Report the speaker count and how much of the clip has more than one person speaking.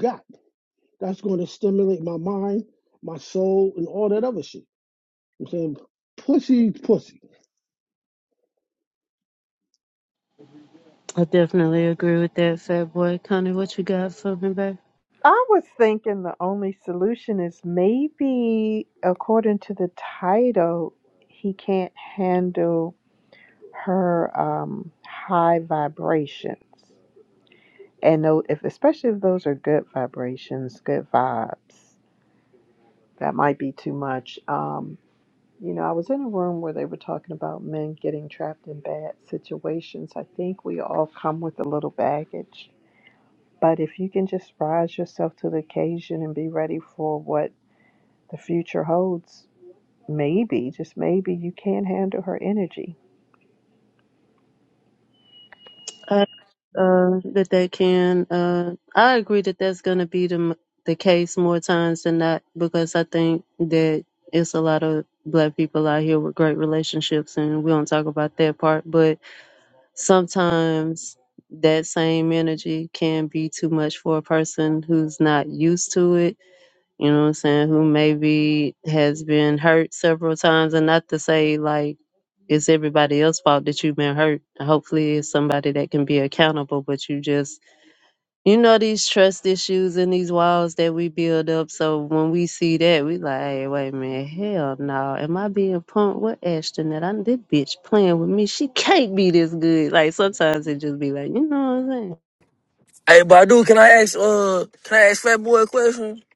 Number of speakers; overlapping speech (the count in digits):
4, no overlap